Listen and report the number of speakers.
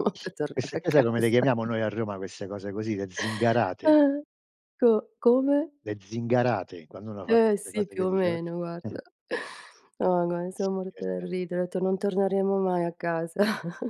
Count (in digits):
2